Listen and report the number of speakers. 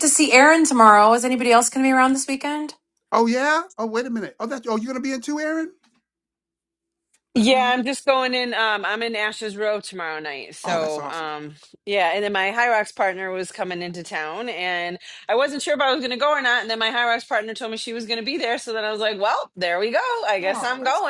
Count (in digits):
3